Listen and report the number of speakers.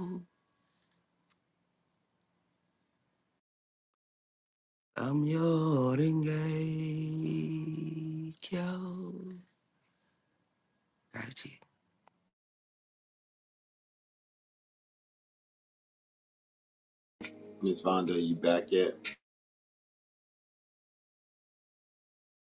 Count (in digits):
2